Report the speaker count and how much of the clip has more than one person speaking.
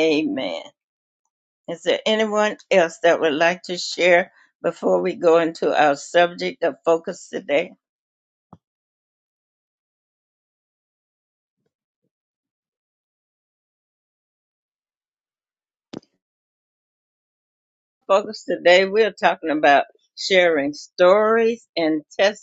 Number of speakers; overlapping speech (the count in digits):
1, no overlap